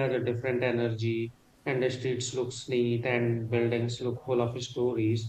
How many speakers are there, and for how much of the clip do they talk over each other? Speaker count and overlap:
1, no overlap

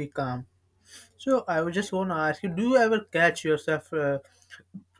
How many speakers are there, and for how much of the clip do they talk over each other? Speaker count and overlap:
1, no overlap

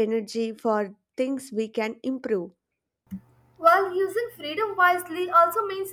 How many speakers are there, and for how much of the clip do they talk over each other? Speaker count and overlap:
2, no overlap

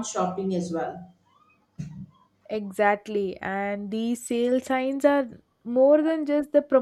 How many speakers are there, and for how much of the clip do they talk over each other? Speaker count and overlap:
2, no overlap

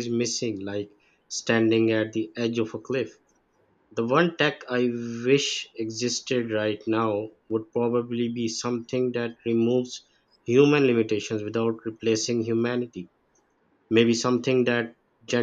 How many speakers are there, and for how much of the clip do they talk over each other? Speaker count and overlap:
1, no overlap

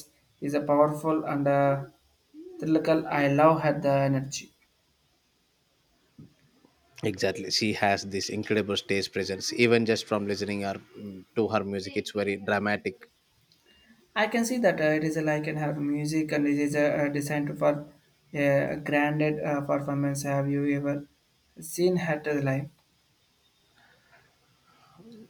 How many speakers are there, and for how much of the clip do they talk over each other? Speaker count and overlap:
2, no overlap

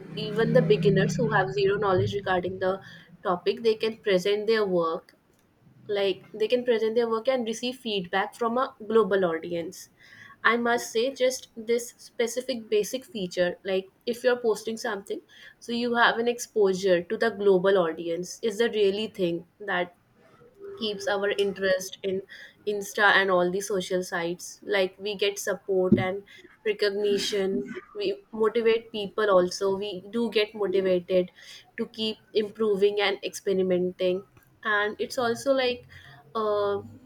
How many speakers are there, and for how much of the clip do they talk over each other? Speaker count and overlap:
1, no overlap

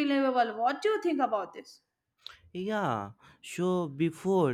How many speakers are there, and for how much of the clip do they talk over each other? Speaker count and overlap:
2, no overlap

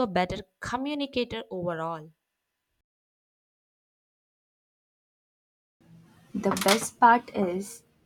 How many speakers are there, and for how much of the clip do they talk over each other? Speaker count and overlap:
2, no overlap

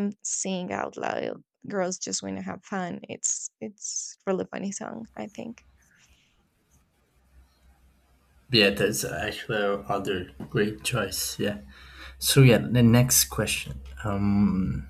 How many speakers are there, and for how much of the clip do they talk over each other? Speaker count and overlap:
2, no overlap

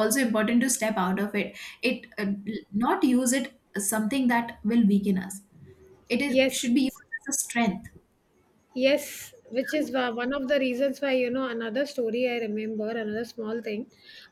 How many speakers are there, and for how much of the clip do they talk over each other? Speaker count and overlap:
2, about 3%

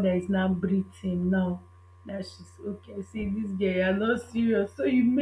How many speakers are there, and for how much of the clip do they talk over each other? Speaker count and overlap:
1, no overlap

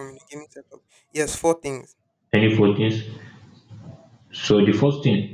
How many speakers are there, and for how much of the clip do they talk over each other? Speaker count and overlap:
2, no overlap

